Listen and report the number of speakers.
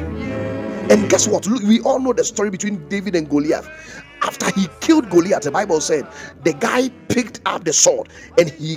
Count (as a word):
one